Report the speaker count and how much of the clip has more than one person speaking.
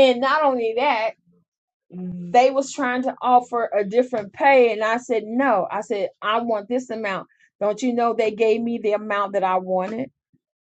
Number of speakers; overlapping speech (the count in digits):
1, no overlap